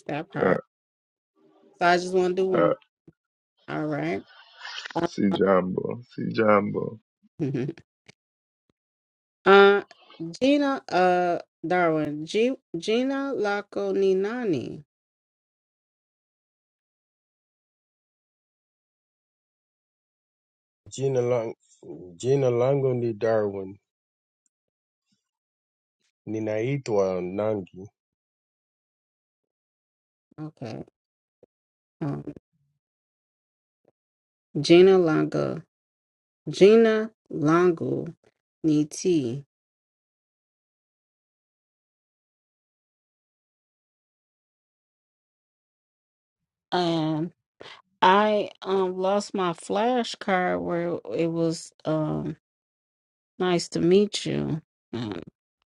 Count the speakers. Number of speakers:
3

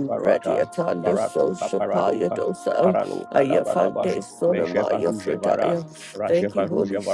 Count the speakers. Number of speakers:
2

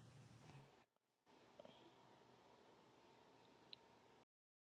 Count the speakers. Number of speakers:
0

